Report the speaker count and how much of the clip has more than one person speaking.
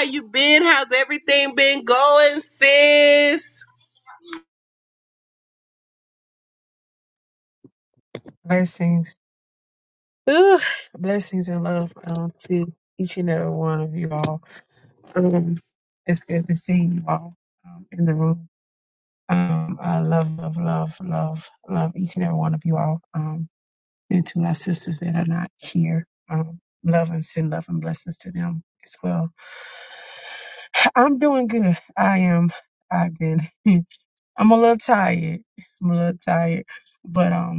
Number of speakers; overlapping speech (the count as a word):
two, no overlap